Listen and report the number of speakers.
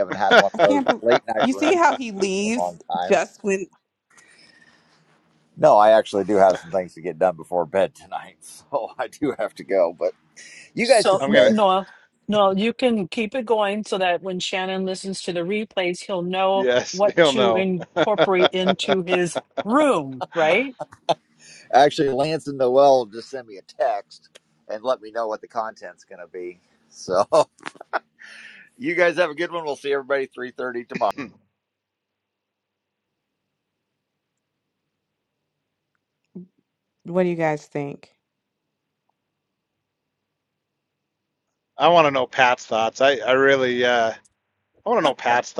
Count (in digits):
4